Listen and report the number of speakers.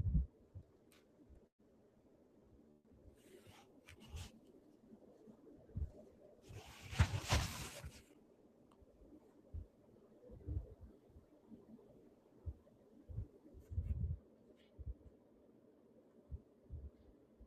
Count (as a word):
zero